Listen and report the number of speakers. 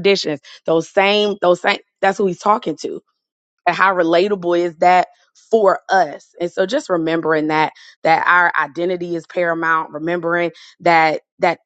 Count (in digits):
1